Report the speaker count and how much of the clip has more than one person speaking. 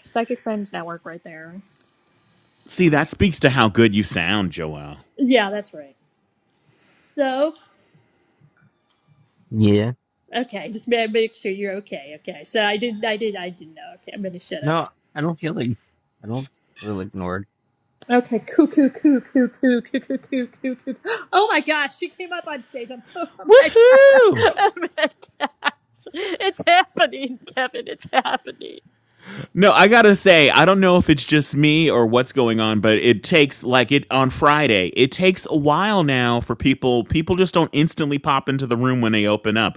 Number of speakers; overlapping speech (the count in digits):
3, about 1%